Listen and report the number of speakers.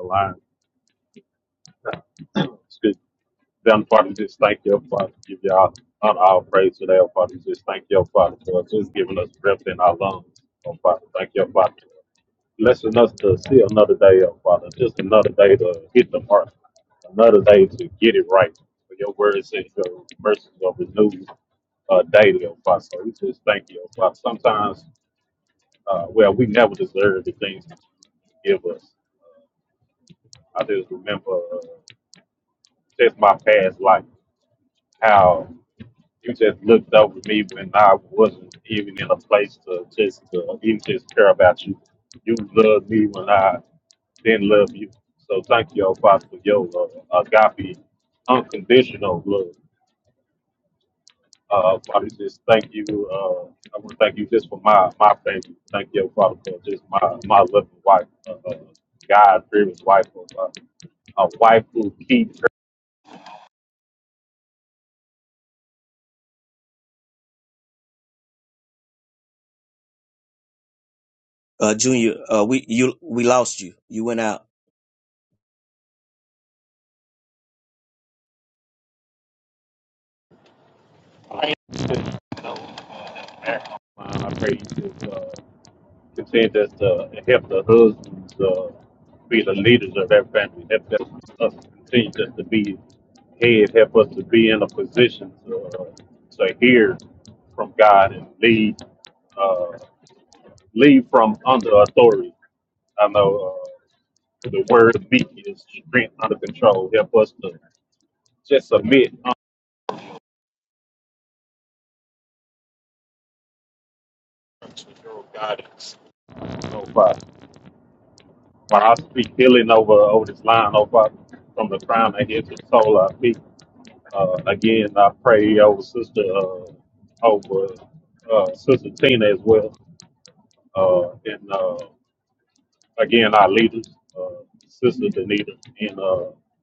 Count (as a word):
two